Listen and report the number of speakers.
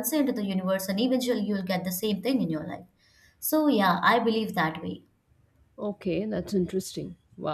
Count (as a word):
two